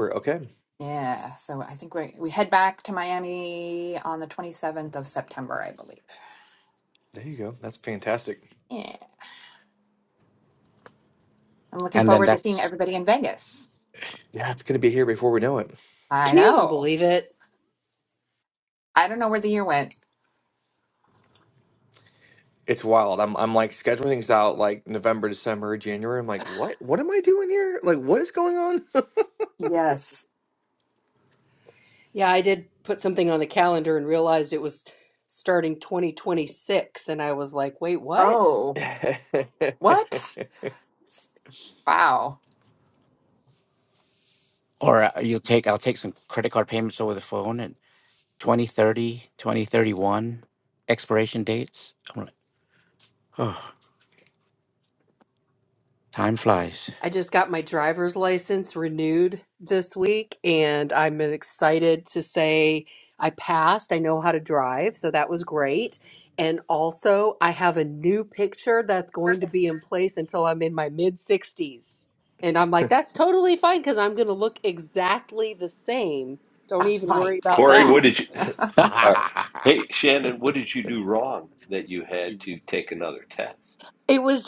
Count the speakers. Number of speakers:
five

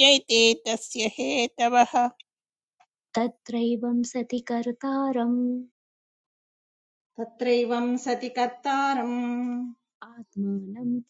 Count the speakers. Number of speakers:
three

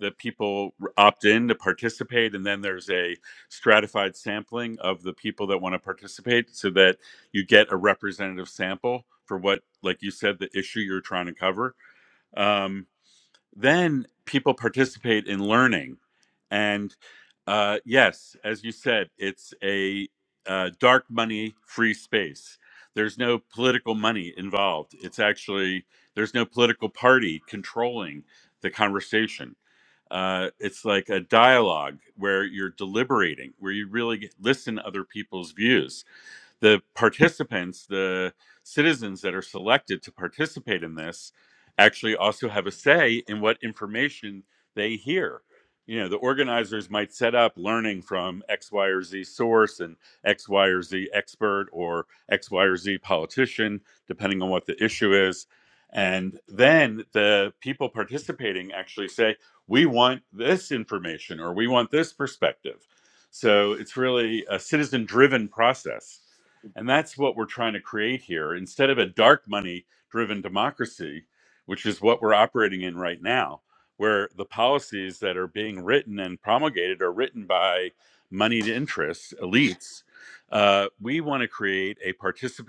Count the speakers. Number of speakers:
one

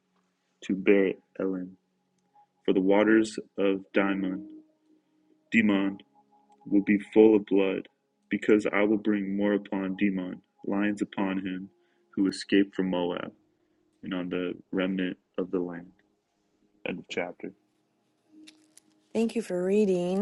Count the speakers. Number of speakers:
two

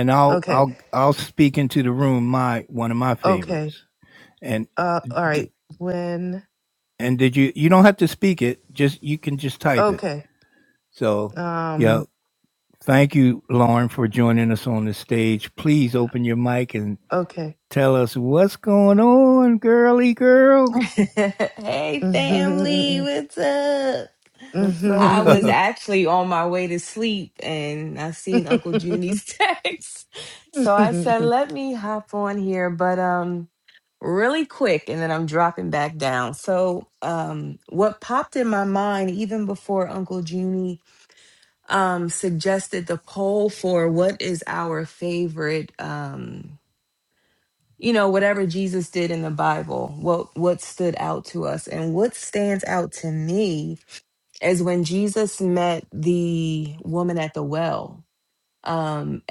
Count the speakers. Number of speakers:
three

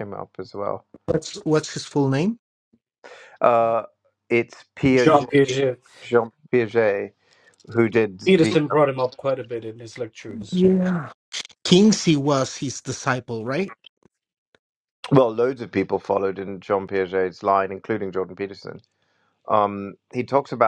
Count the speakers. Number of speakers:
three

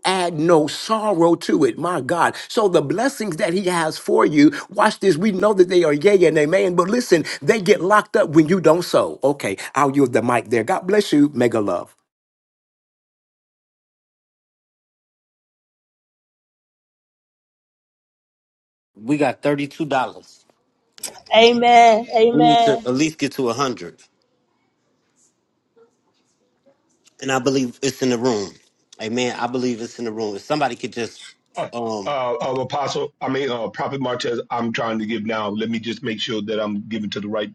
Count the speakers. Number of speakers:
four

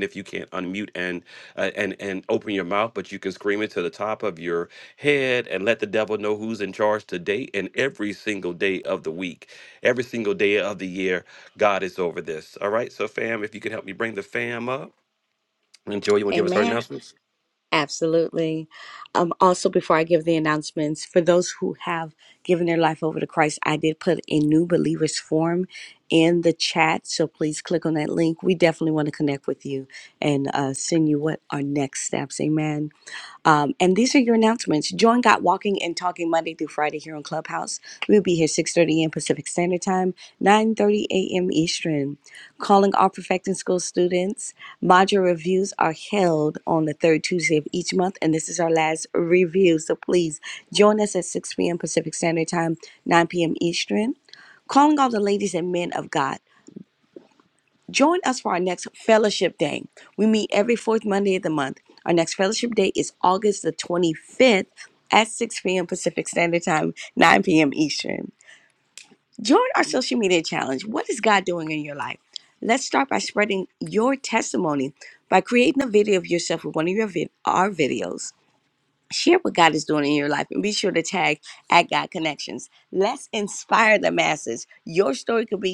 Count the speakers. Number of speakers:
two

